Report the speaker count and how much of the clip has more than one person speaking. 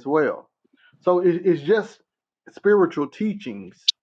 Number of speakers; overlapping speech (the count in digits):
1, no overlap